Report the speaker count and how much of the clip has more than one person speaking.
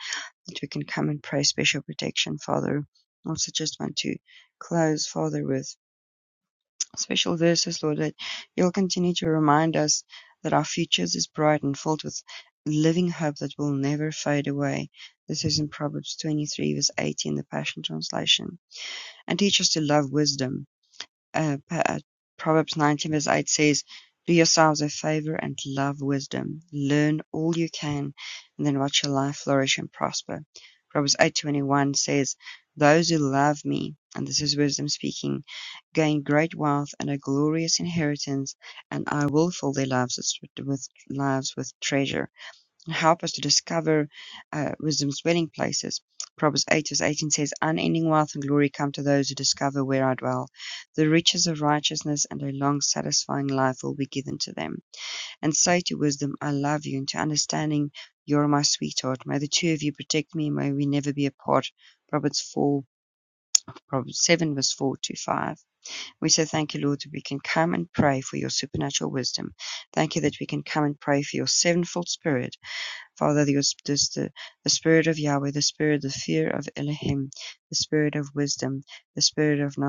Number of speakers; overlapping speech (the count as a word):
one, no overlap